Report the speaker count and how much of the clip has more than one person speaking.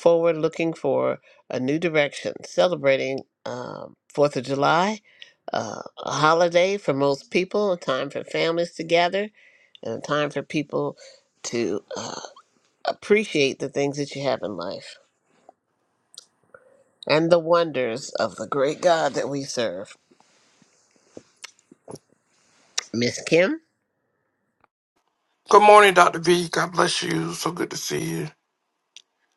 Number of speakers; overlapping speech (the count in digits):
2, no overlap